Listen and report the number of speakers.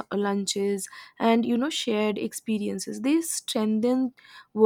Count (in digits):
1